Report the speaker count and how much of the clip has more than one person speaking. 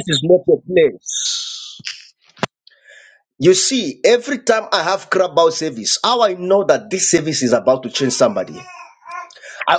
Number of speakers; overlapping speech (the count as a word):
one, no overlap